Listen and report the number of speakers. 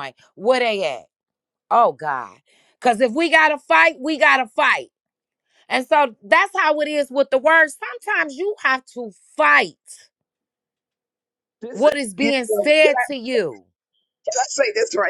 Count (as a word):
two